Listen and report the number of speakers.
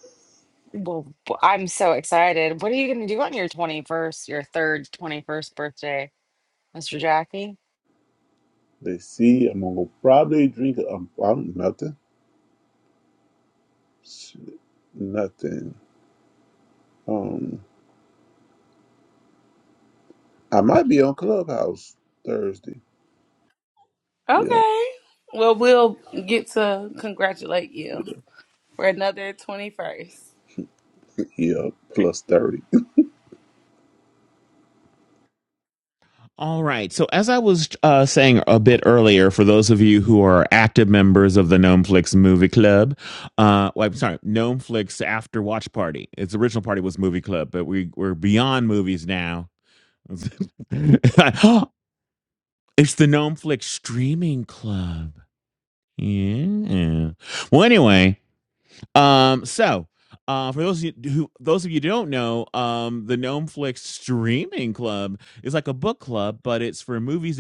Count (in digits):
4